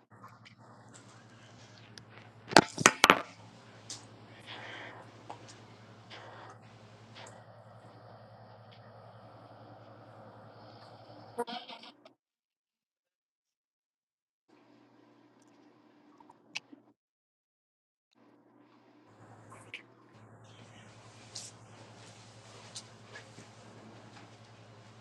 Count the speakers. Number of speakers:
zero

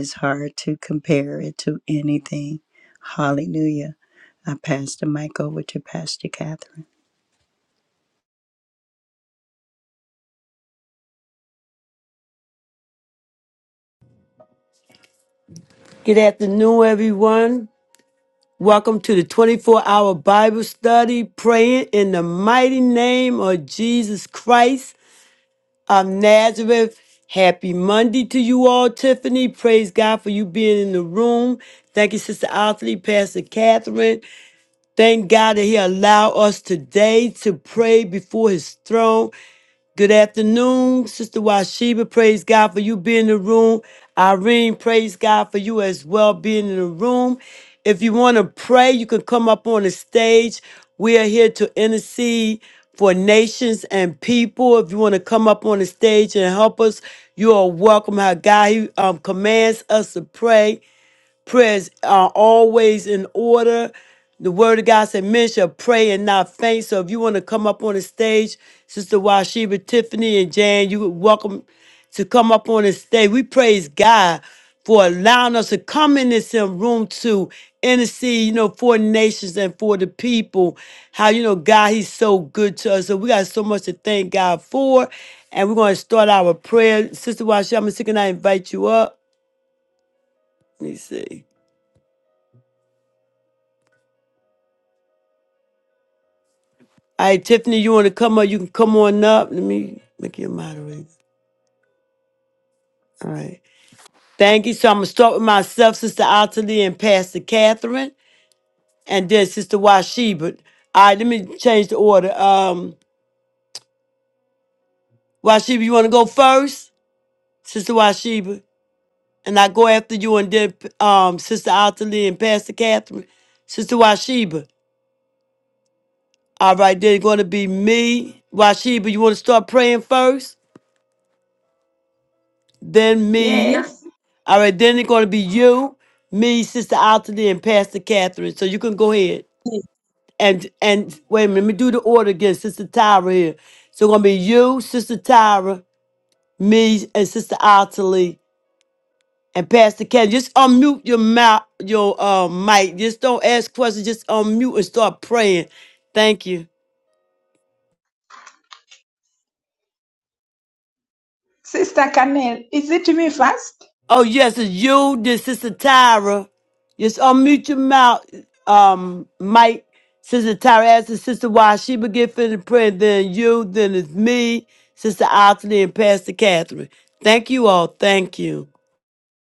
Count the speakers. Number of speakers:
three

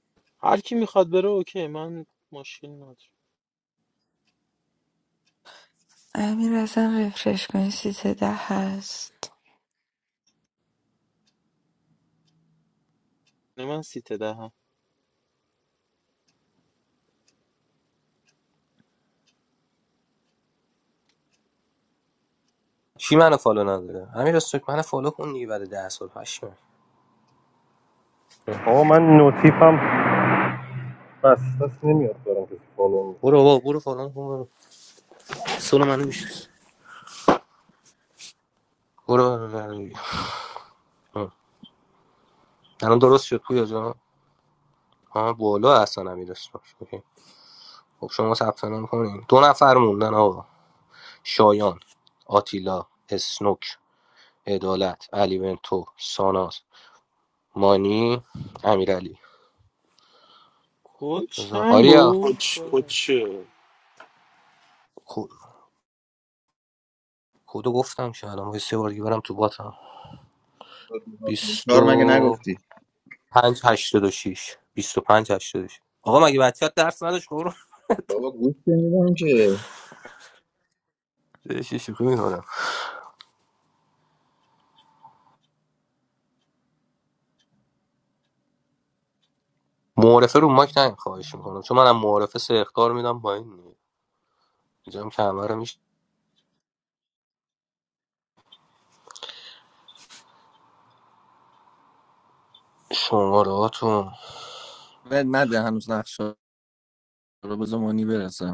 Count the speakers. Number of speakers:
six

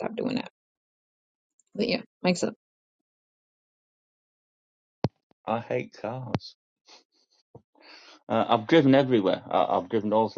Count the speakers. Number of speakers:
two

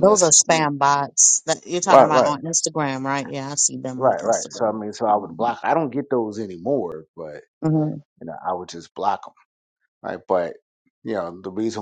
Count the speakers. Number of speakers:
two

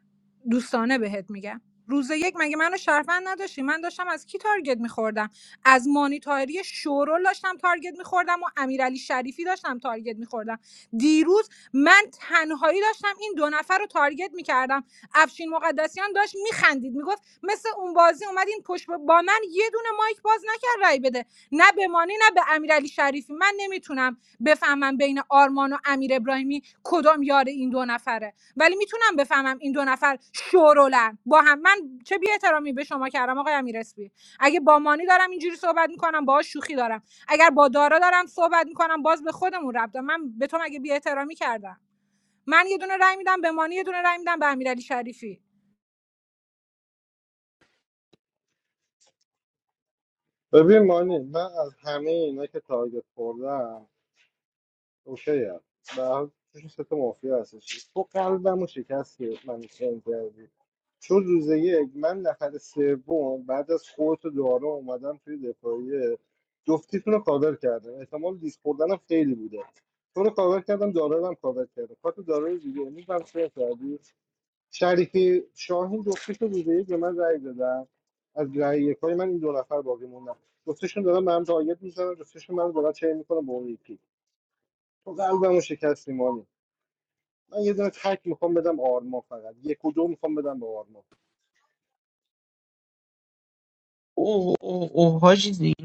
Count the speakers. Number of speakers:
three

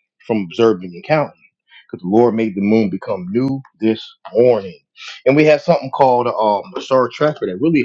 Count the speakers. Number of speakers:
one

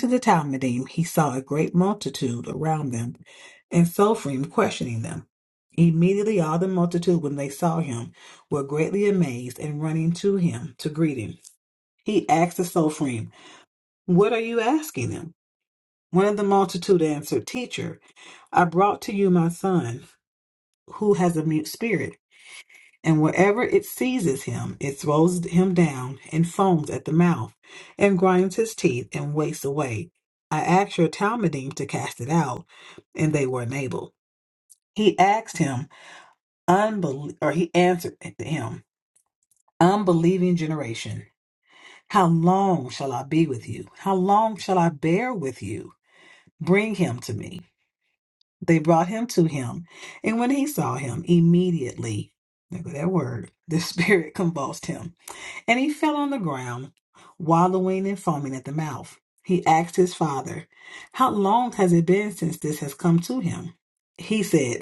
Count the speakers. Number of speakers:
one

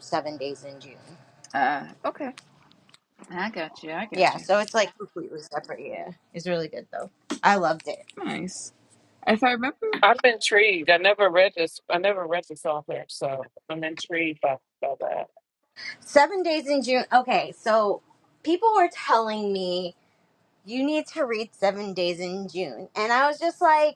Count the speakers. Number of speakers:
three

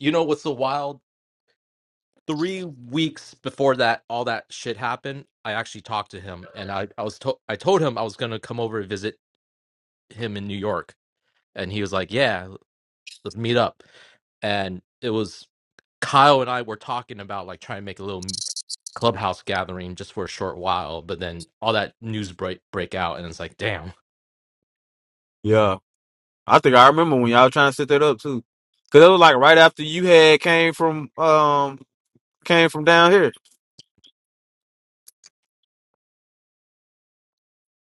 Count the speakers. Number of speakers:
two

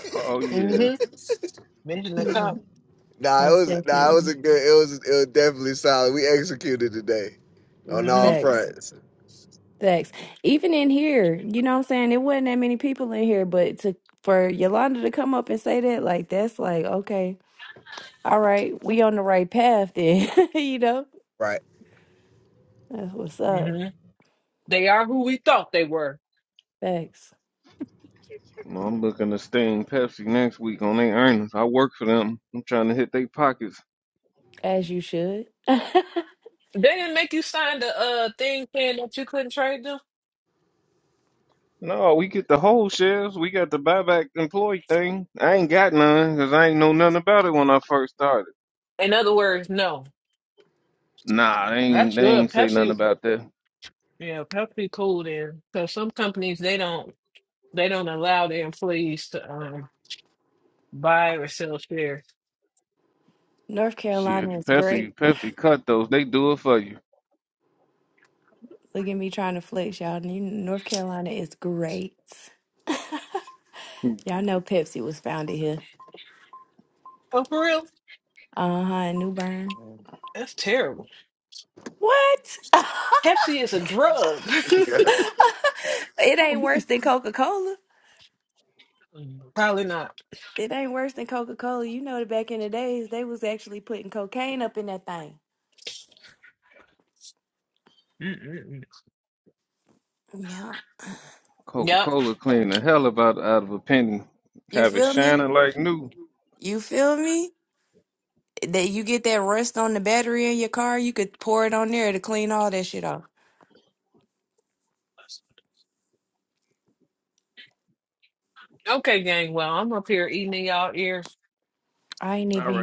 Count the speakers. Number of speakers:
four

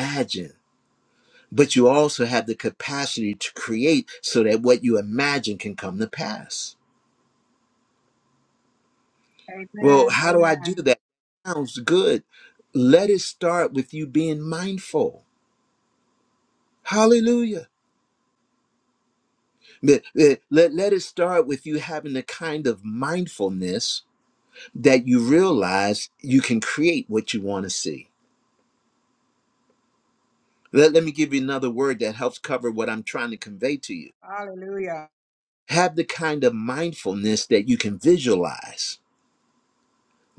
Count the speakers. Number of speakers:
two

